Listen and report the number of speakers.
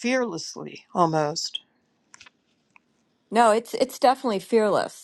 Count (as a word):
two